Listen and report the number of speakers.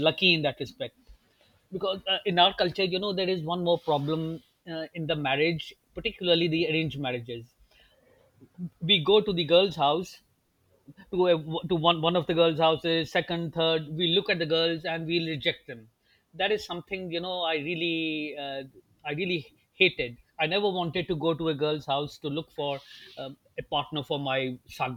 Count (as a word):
one